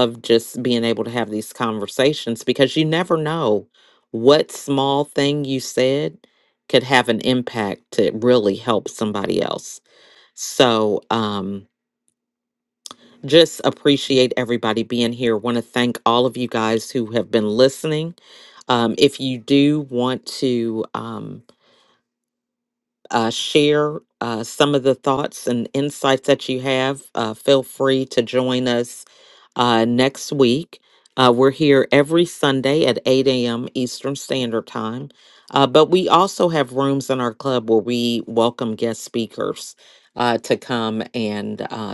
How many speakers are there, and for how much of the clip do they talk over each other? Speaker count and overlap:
1, no overlap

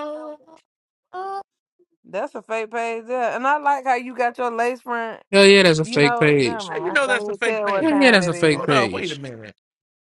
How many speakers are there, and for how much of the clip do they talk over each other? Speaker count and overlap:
3, about 32%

